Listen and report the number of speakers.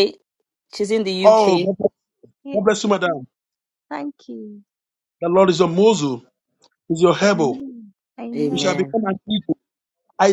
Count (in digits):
3